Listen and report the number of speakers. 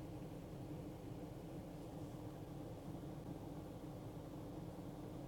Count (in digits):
0